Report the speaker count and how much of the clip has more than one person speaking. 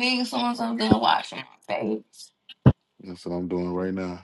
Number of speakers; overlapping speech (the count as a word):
two, no overlap